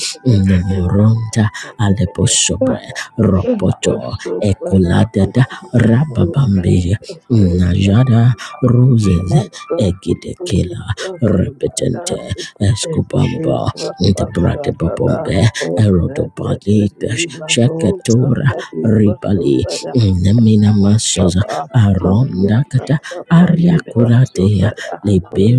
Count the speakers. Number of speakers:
three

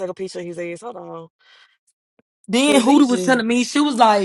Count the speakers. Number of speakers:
two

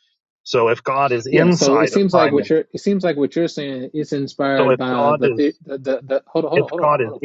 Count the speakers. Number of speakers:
two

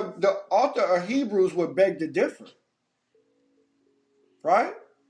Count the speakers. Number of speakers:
one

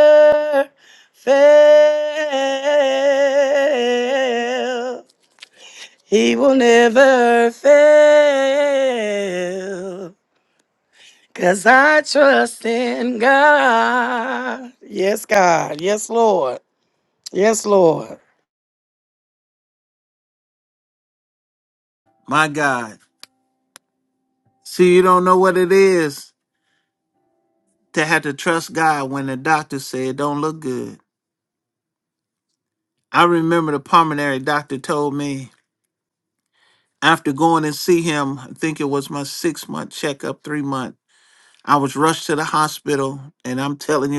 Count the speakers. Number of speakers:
two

